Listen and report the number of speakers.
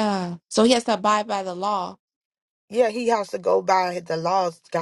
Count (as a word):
two